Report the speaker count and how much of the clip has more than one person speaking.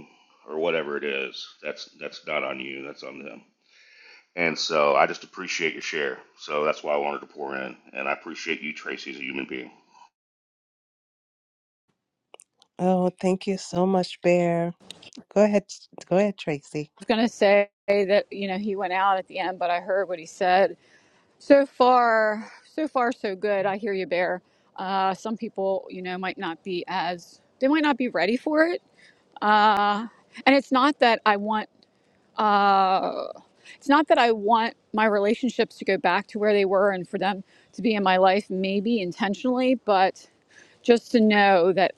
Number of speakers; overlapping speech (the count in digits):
3, no overlap